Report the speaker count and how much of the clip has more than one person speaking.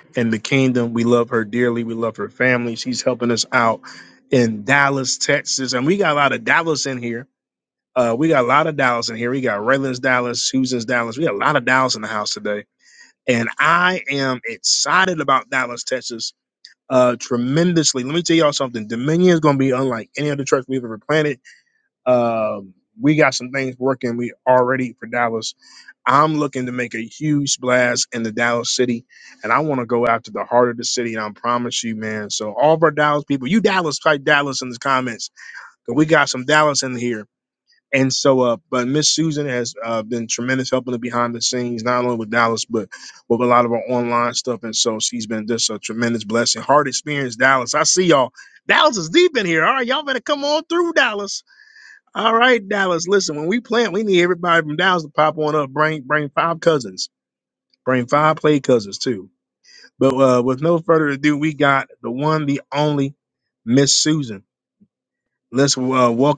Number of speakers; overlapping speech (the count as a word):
one, no overlap